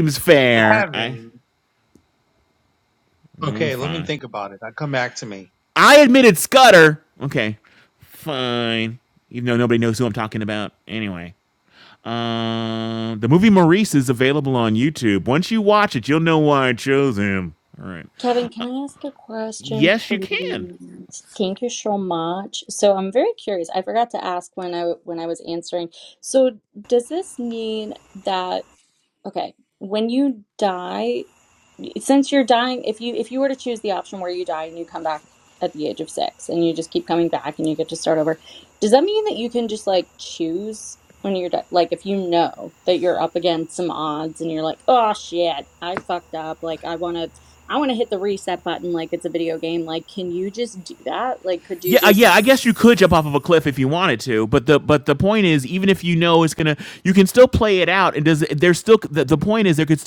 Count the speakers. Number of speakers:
three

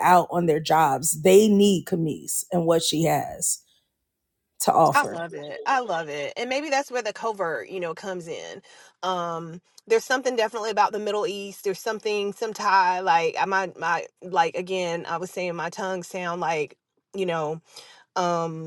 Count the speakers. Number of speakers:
two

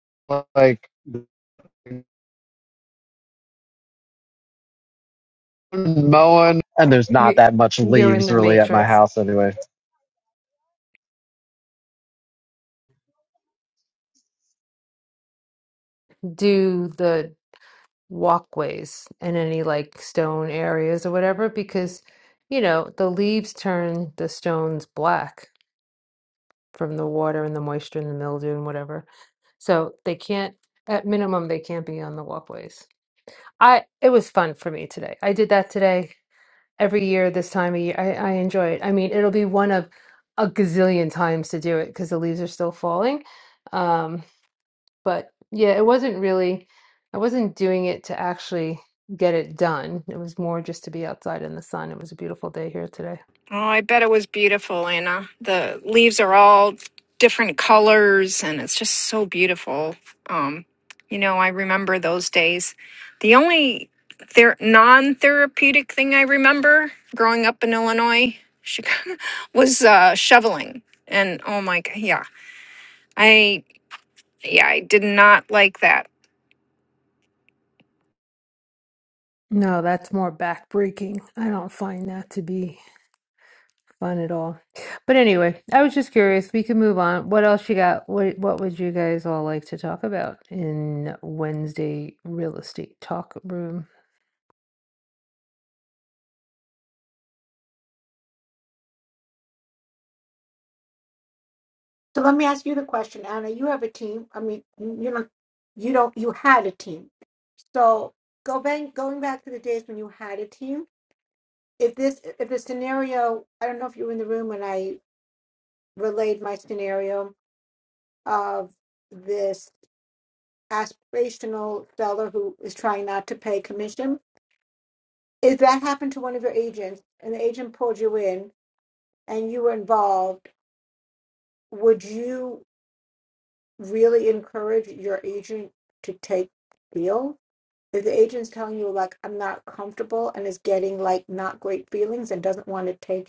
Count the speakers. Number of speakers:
four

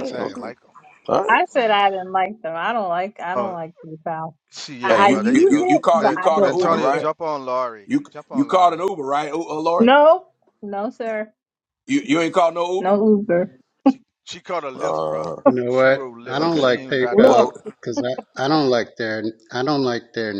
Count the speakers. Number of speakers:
four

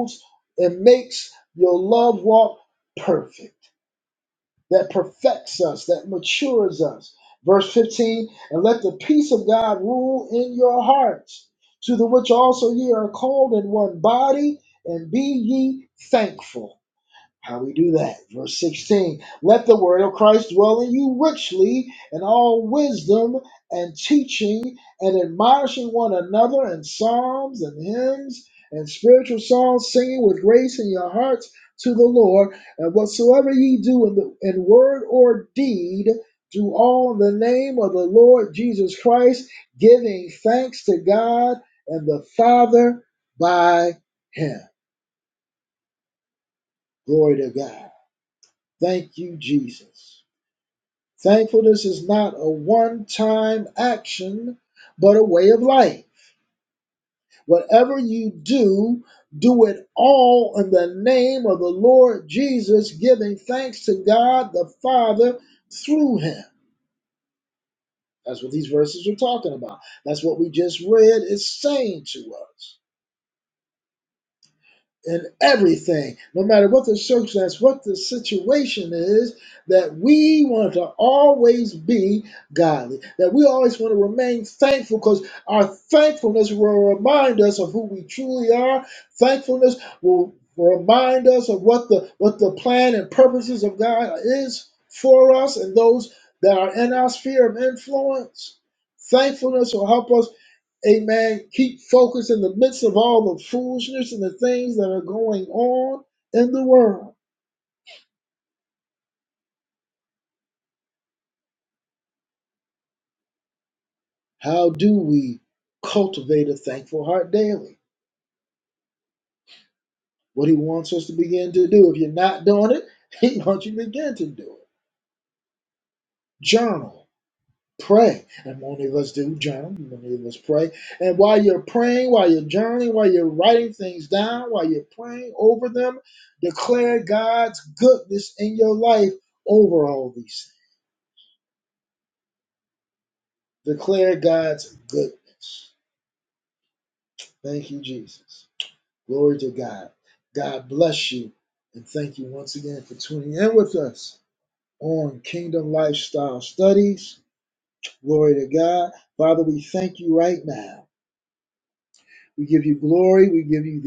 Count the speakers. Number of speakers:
one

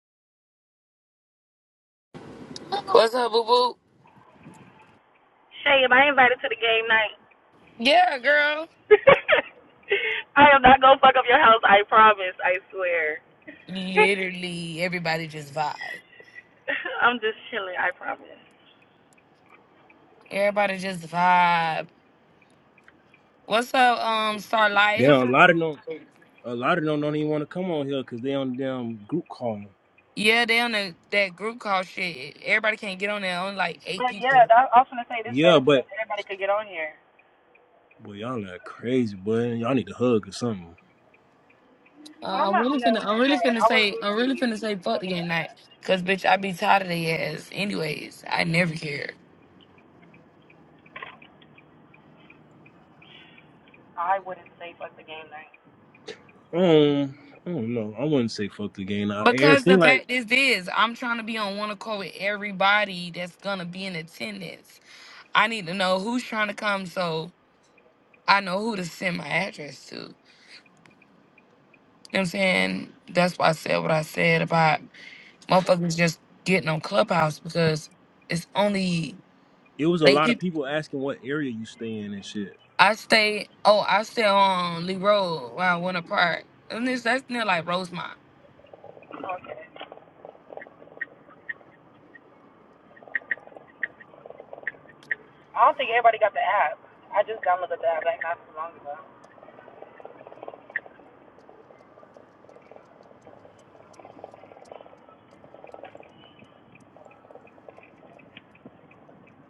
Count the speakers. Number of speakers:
three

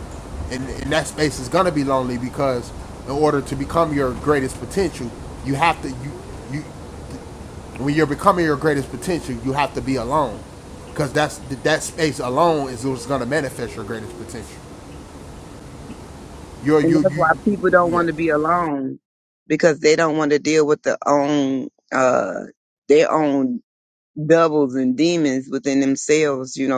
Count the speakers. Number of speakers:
two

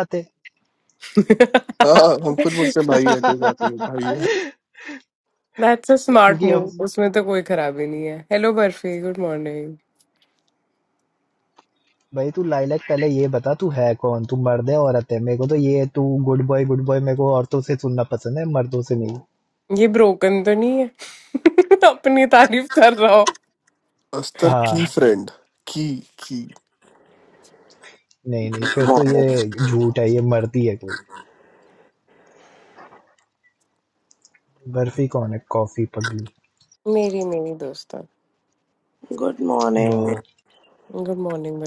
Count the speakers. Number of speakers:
four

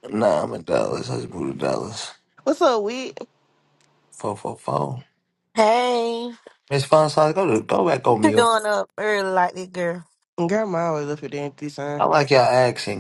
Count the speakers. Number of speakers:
three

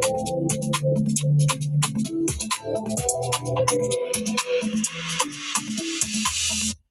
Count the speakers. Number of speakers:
zero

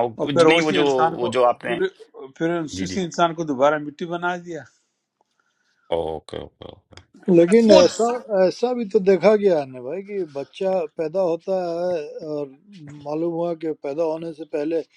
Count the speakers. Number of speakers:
three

